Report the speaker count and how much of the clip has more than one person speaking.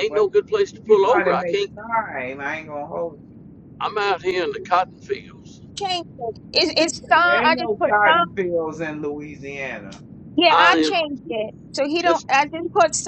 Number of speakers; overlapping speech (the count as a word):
three, about 22%